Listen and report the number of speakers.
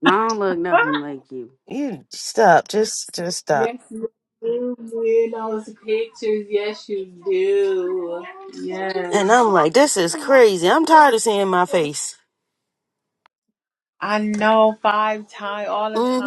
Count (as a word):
three